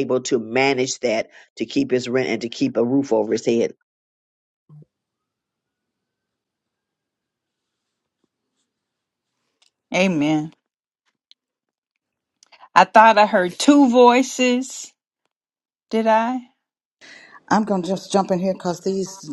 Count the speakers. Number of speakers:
3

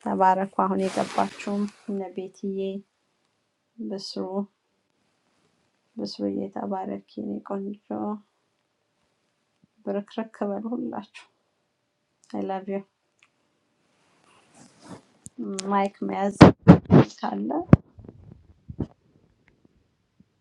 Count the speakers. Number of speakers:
1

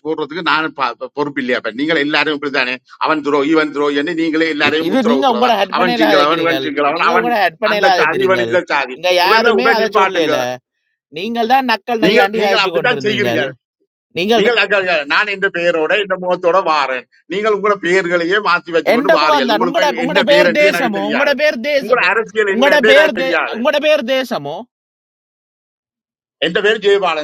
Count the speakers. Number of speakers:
2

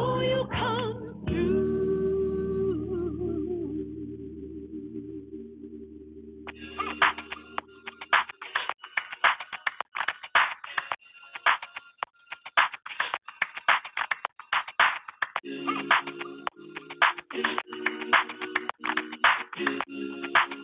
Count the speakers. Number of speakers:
1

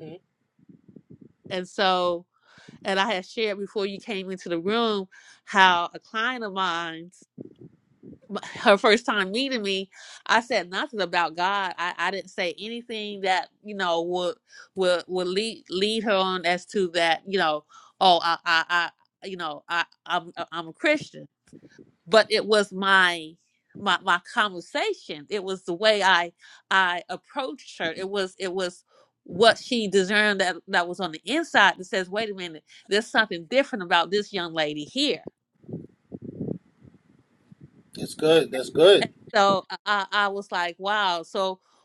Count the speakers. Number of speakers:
2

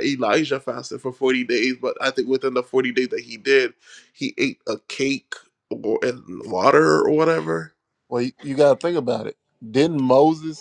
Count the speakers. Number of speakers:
2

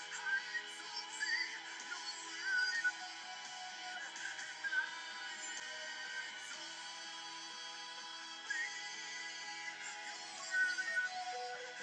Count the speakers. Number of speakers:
0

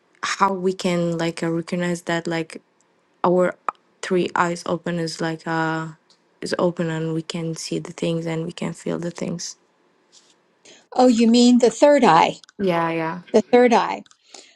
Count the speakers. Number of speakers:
2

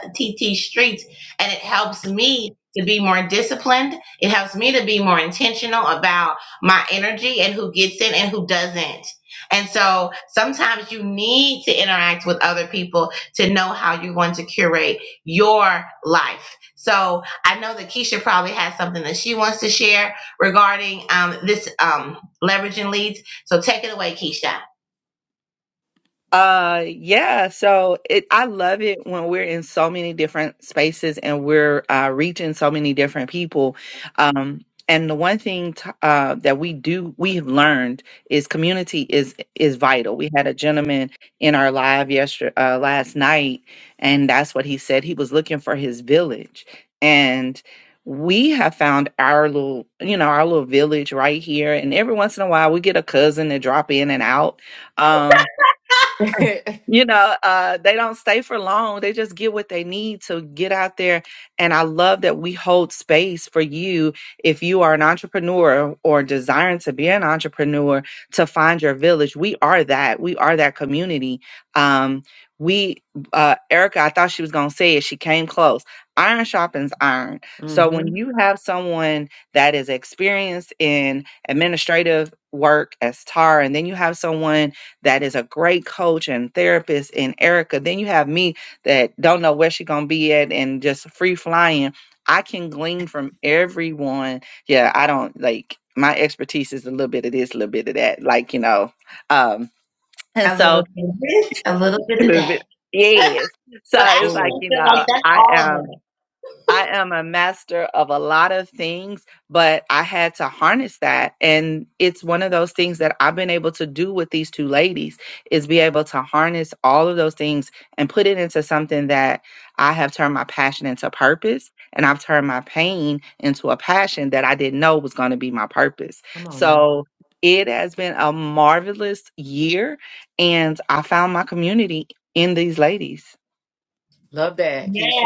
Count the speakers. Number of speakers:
3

